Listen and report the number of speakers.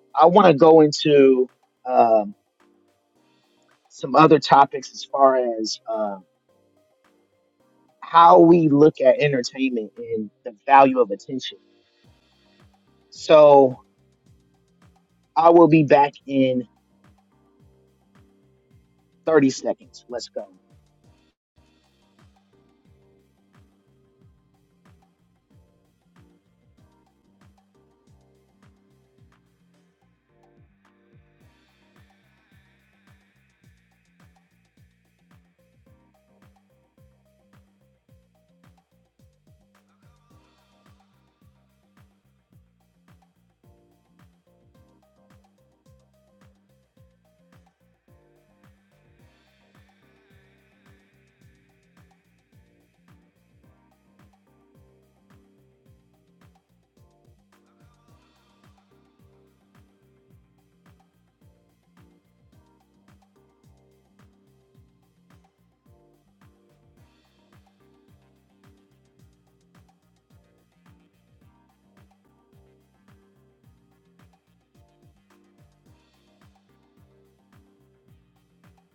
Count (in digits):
1